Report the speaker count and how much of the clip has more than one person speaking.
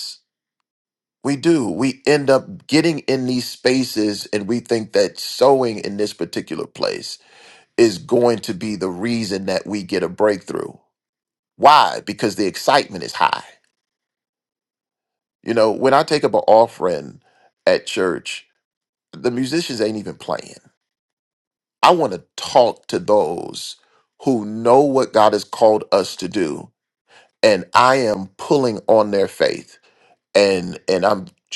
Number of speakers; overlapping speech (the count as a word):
one, no overlap